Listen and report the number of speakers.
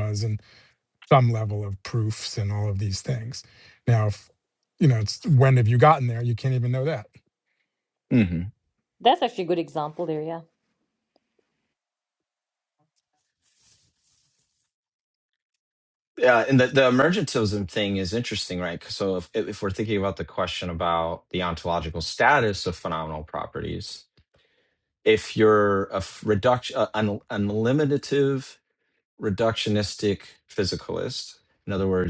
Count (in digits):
3